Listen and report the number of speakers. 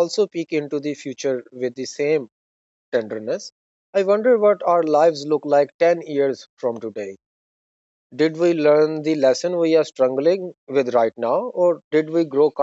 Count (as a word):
one